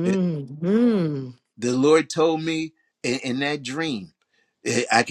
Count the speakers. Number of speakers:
two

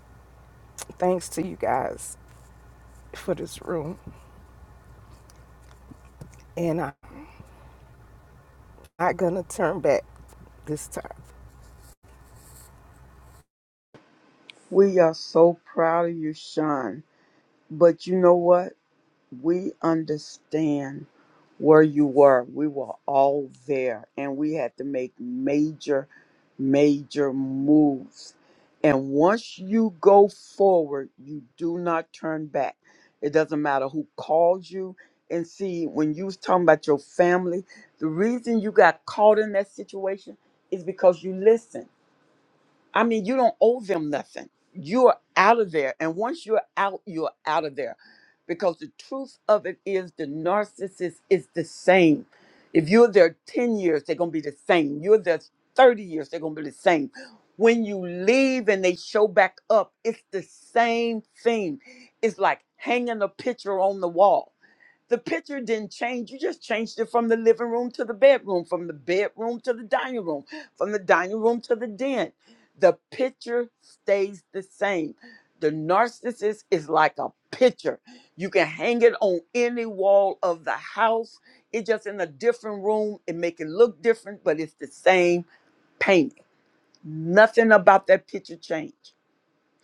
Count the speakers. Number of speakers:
two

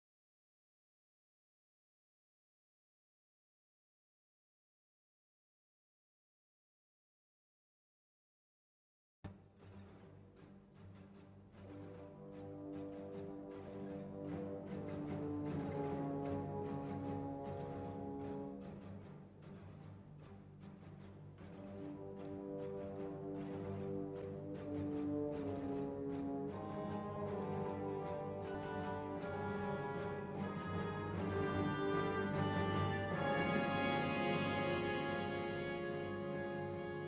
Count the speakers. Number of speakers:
zero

